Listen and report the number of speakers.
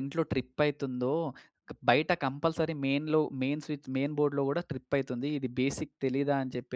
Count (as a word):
one